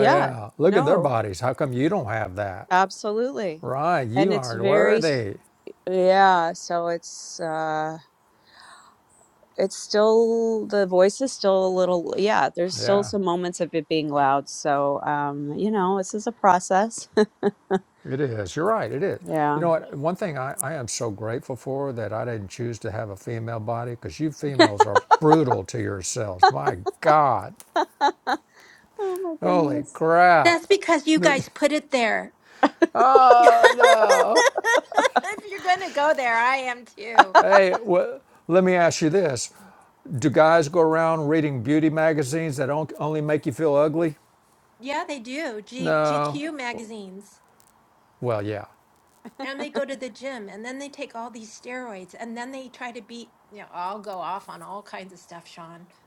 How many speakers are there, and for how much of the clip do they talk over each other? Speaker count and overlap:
3, about 7%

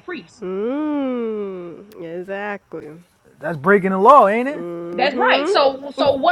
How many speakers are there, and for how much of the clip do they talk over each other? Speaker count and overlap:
3, about 12%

